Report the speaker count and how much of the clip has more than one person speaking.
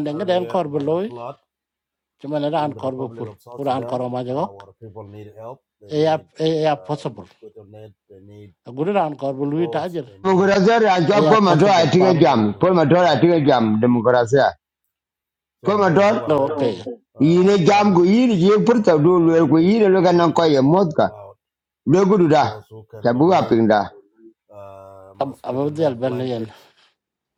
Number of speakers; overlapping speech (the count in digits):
3, about 50%